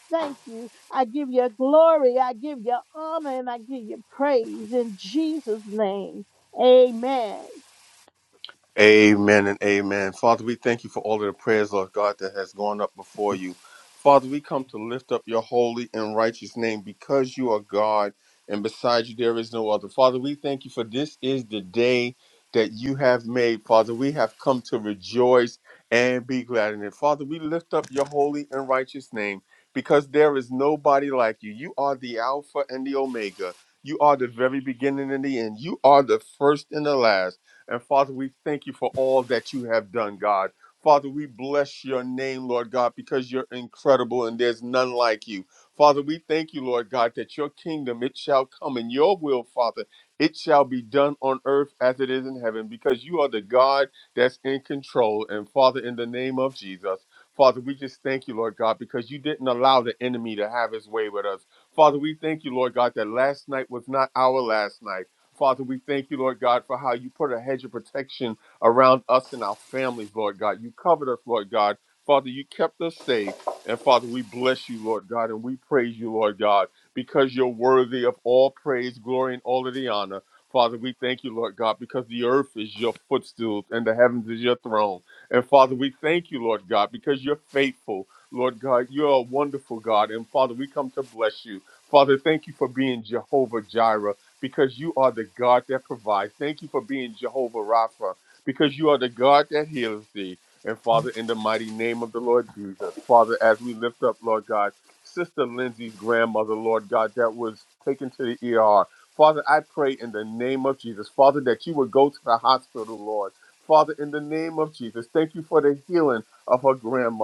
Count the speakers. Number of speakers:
two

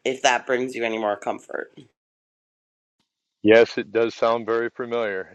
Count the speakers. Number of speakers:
two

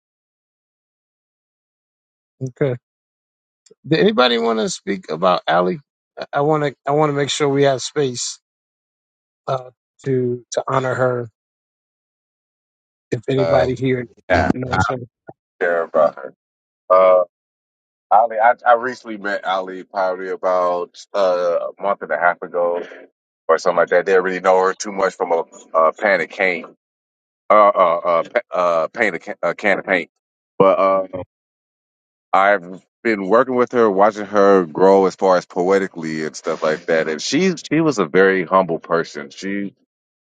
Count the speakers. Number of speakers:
two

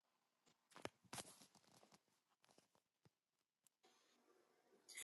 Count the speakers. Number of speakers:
zero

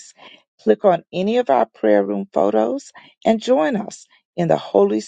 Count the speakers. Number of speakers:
one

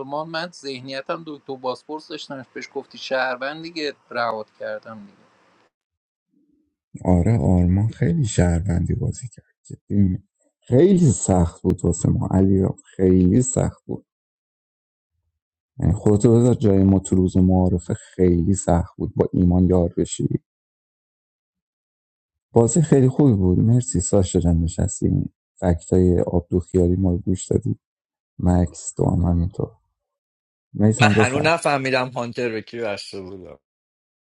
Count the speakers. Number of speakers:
three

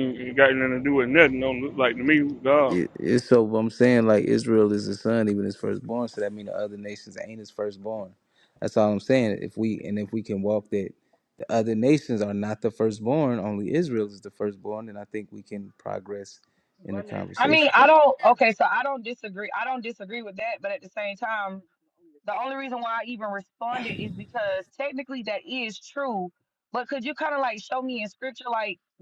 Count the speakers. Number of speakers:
three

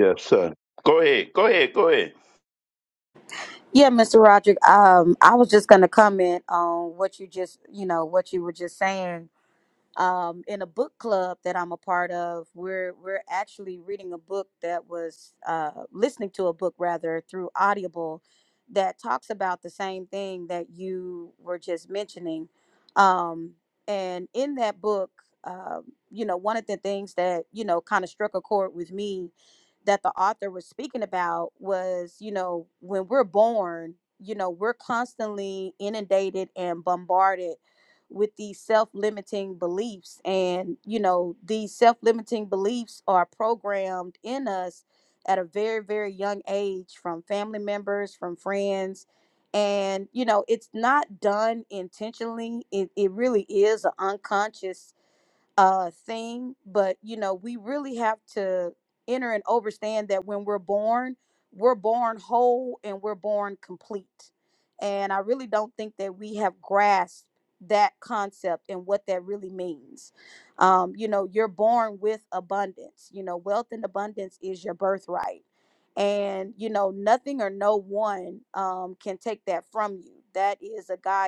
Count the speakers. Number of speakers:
two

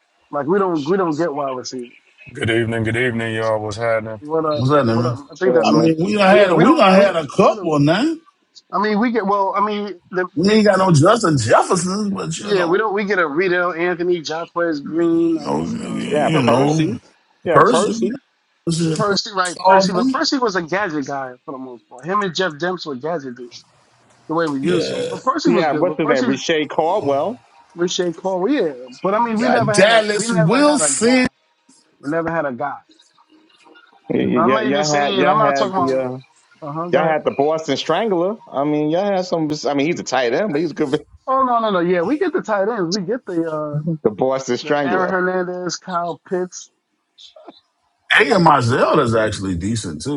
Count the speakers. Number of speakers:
four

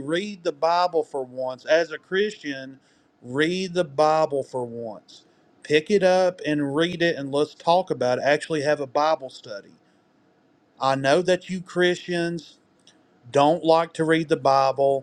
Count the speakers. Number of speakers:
one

